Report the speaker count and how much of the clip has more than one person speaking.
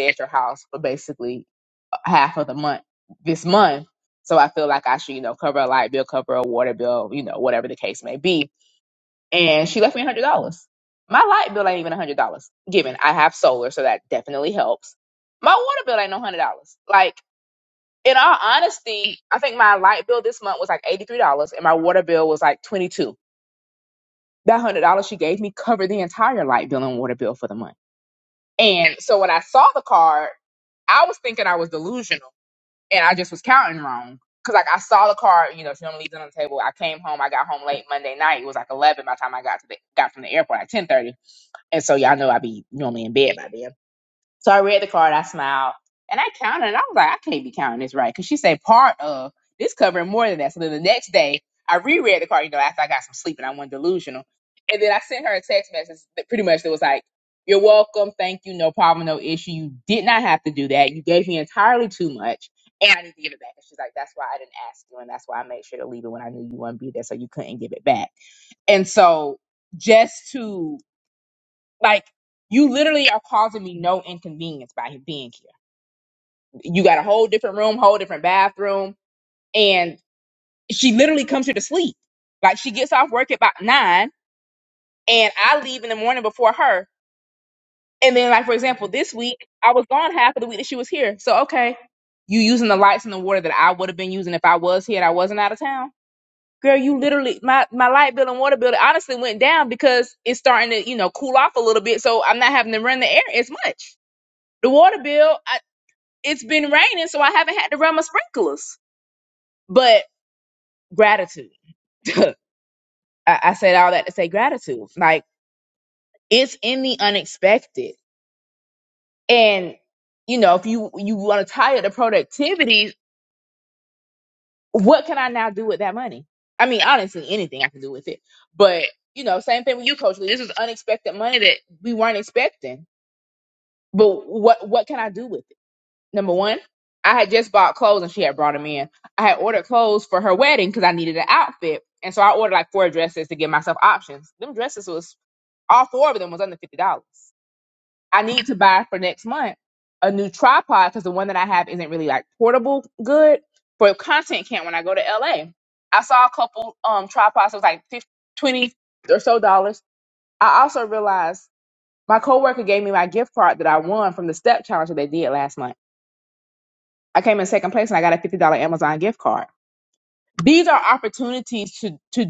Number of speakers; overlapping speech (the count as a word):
one, no overlap